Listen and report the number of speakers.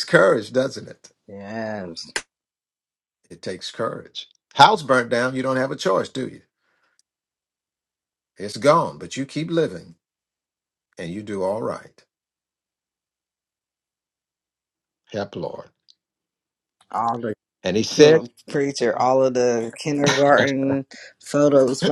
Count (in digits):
2